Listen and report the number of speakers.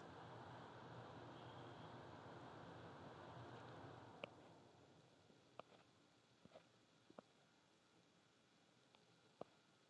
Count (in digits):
0